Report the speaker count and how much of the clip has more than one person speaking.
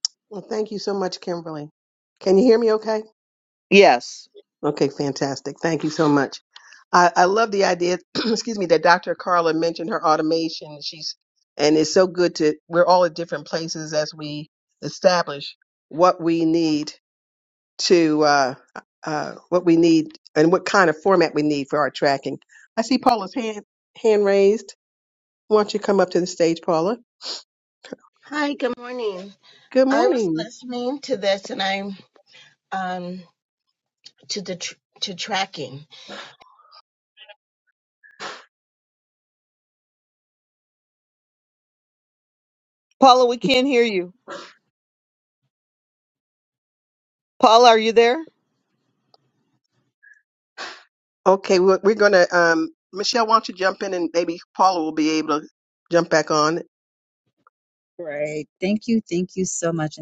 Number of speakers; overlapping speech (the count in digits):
4, about 1%